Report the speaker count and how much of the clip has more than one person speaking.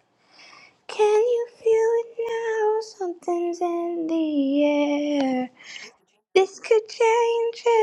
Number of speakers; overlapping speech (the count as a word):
one, no overlap